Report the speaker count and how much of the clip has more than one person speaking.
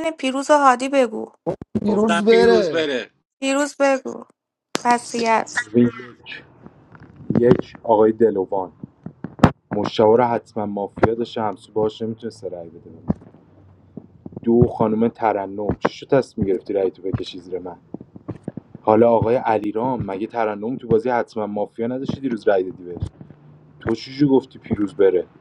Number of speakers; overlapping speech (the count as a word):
three, no overlap